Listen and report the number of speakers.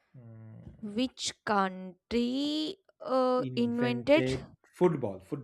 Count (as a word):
two